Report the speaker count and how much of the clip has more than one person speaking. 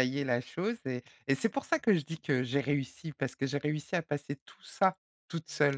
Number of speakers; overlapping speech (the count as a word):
one, no overlap